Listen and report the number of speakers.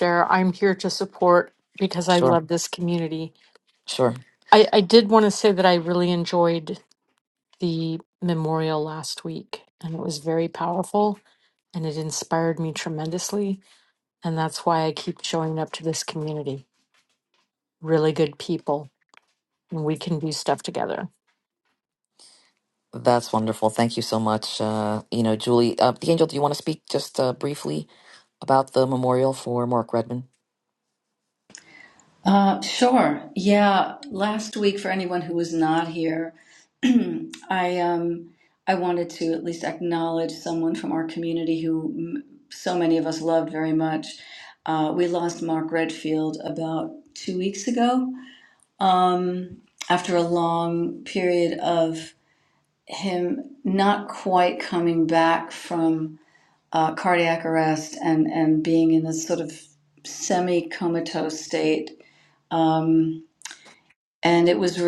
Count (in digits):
3